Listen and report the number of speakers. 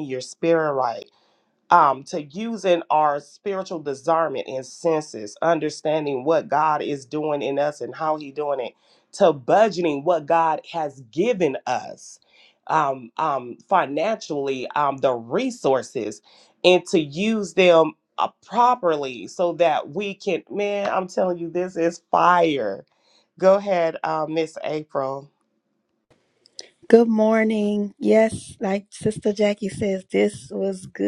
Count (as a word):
two